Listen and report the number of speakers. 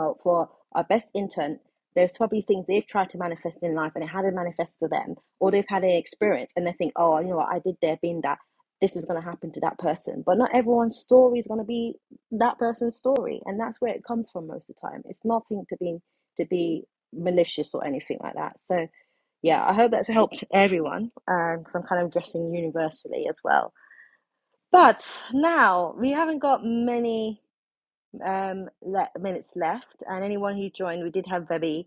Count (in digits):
1